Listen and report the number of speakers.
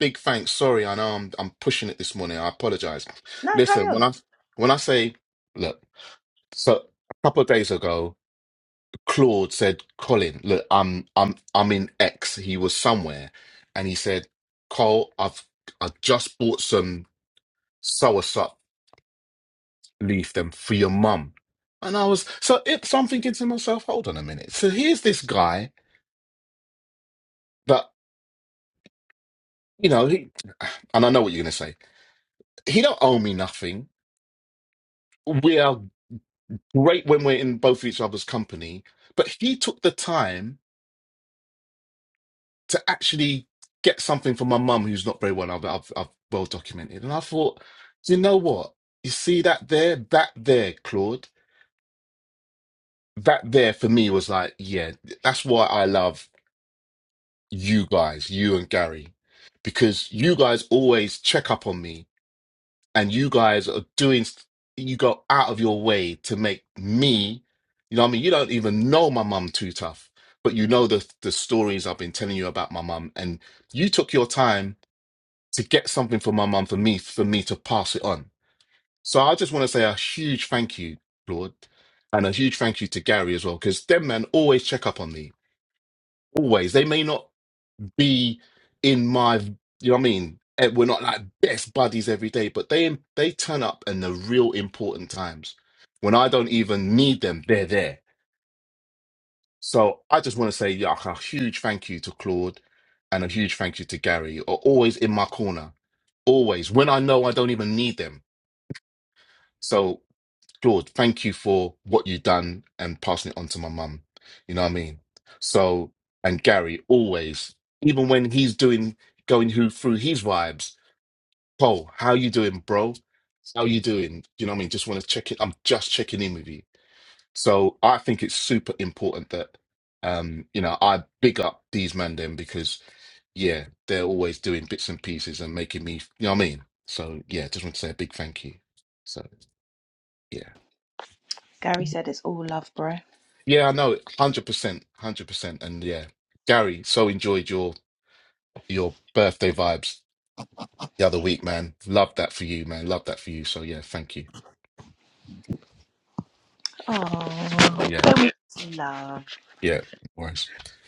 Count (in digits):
2